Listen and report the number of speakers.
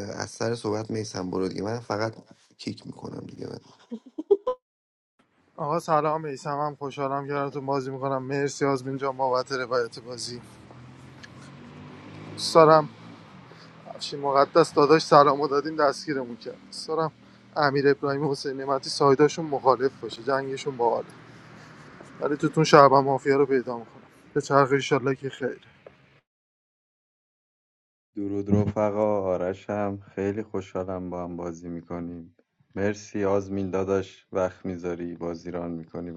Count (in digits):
3